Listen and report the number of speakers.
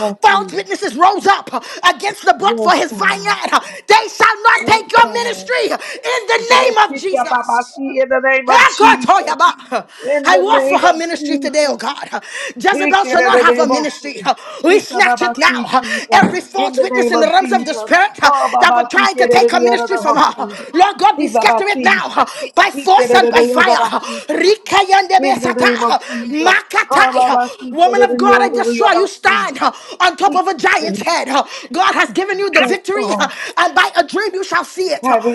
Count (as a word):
two